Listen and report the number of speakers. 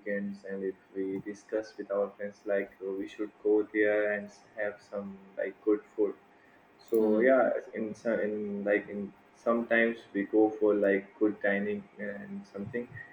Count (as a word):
one